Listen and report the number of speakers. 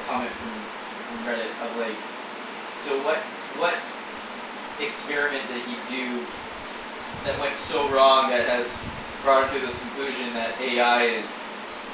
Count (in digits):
1